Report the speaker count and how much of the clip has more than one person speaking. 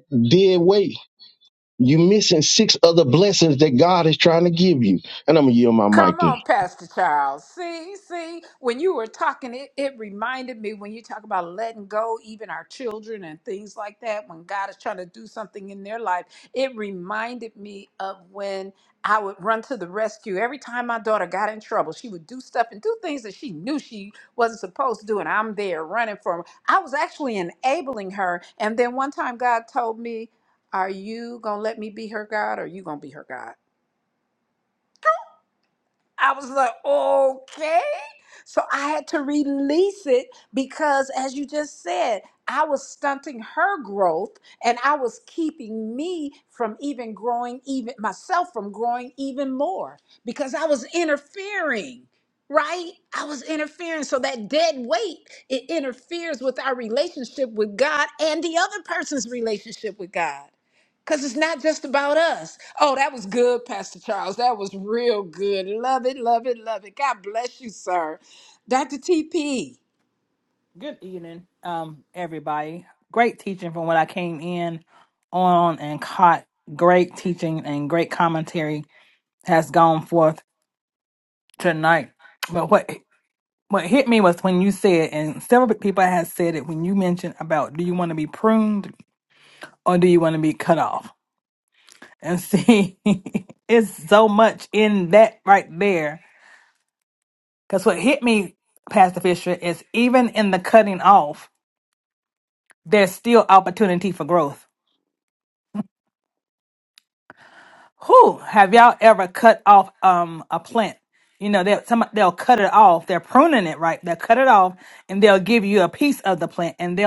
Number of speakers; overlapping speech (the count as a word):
three, under 1%